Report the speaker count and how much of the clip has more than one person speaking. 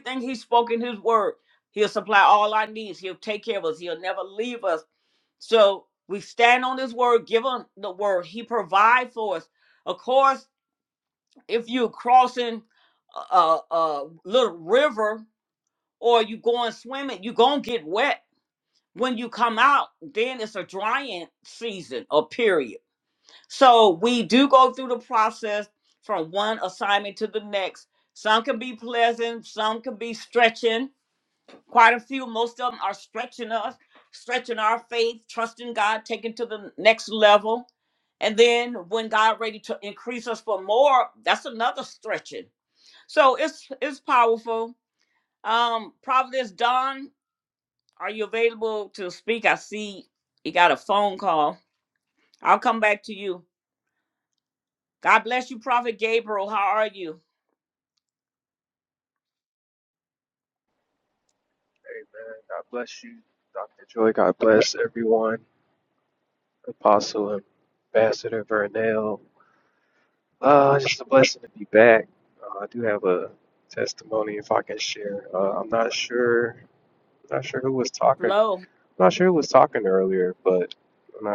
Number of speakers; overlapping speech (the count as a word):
two, under 1%